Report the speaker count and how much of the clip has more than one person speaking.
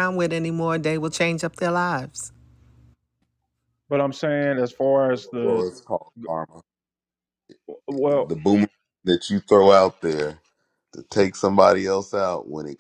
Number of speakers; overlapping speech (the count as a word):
three, about 3%